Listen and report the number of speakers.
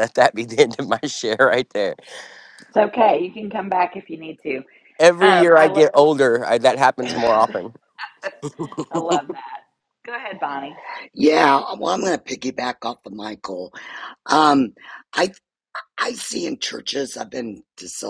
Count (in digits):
3